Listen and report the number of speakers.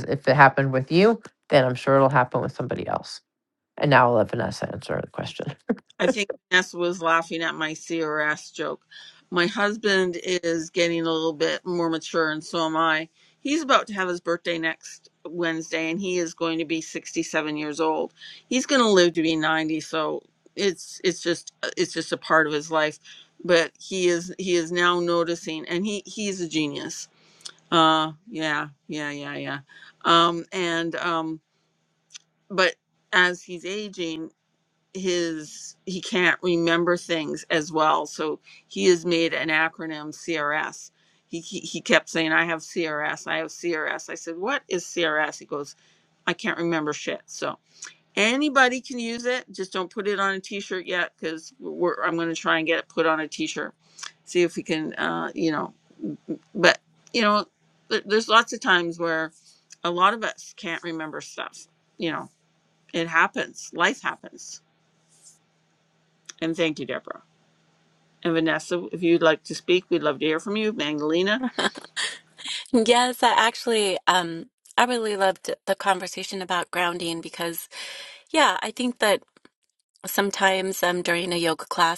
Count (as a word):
three